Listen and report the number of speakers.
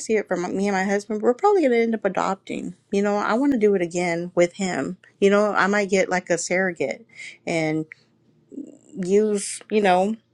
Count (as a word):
one